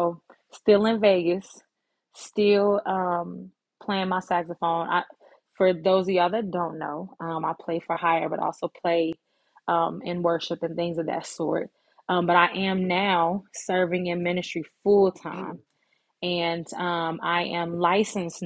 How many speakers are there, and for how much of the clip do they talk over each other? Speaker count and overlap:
one, no overlap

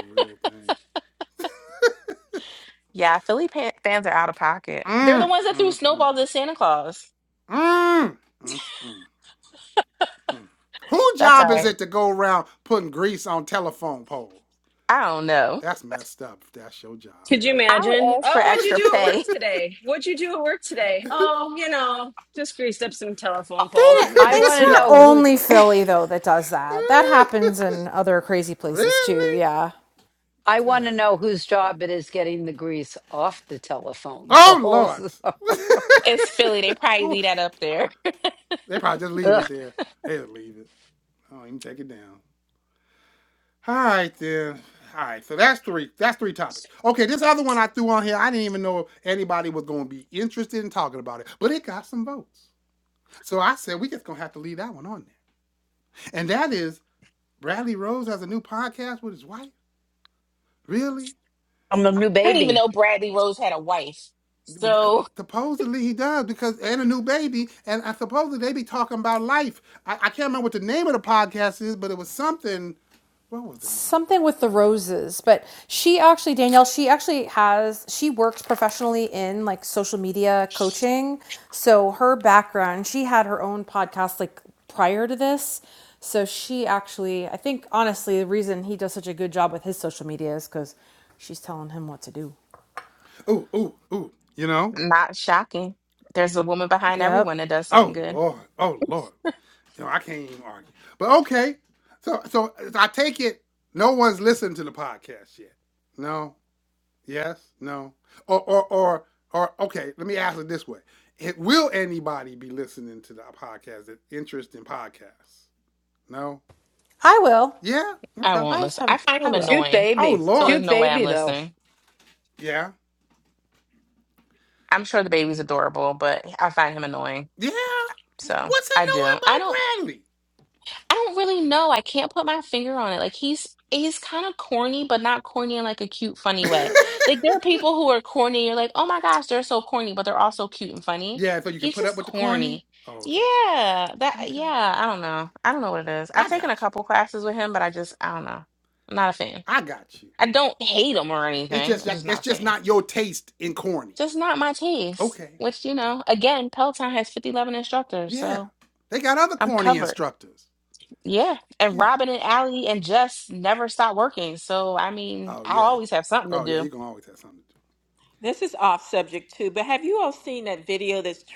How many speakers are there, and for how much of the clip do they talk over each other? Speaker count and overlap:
six, about 11%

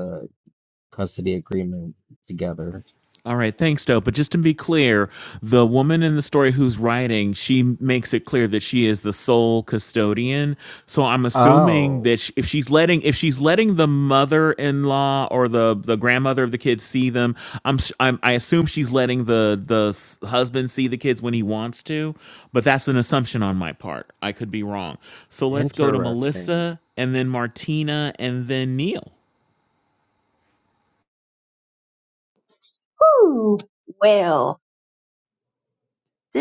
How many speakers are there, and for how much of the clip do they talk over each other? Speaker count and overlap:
three, about 5%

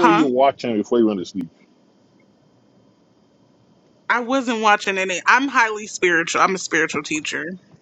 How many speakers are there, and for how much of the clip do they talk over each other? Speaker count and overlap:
two, about 4%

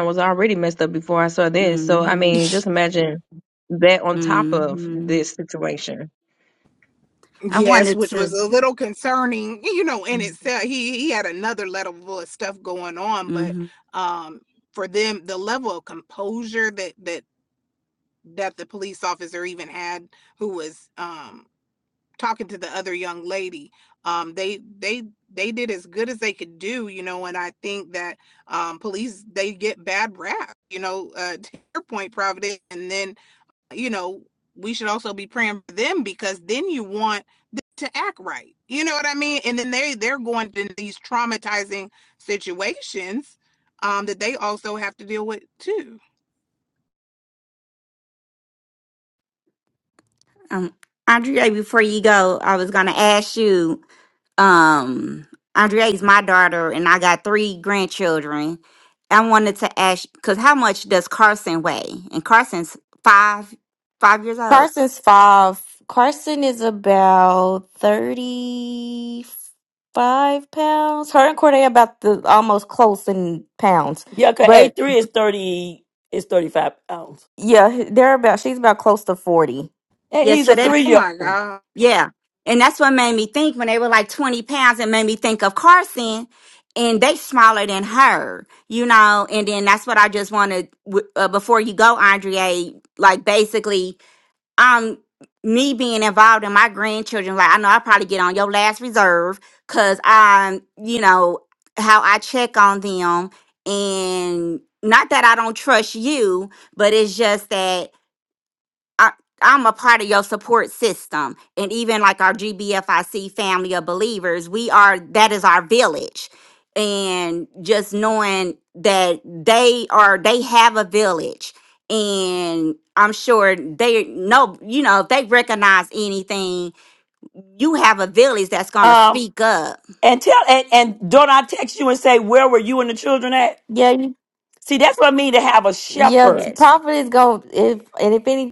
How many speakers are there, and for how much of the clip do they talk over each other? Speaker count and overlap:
five, about 4%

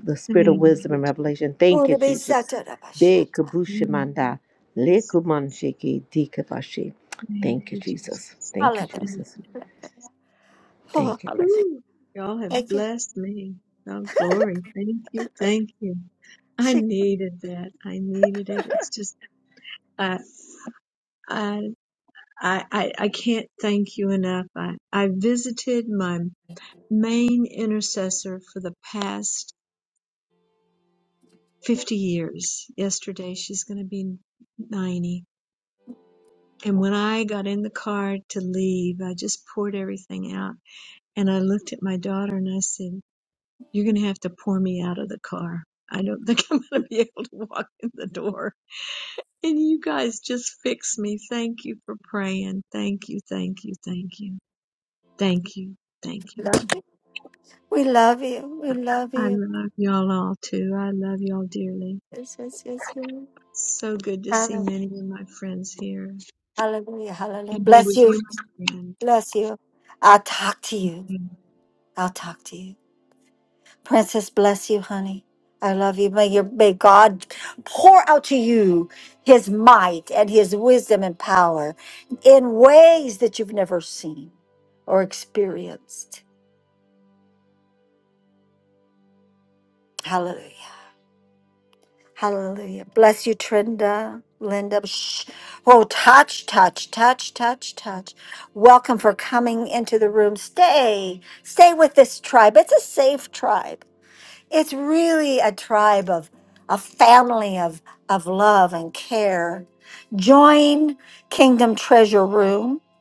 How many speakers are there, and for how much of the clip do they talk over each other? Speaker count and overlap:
three, about 5%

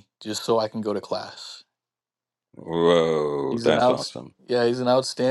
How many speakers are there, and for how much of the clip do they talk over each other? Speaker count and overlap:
two, about 11%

